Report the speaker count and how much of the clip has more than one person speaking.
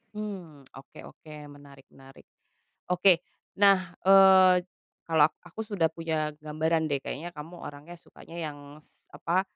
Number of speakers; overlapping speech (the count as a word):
one, no overlap